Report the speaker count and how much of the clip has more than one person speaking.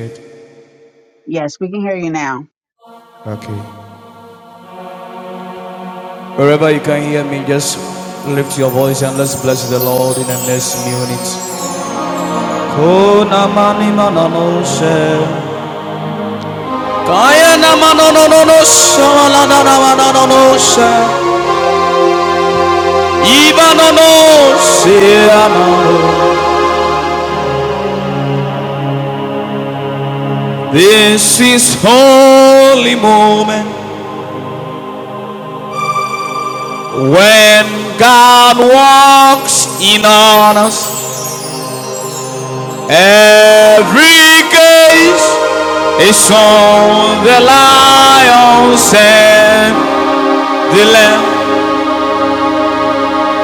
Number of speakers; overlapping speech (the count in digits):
2, no overlap